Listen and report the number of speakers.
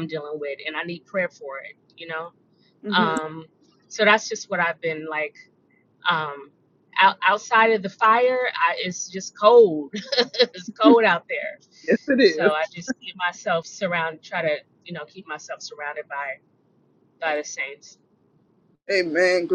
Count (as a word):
two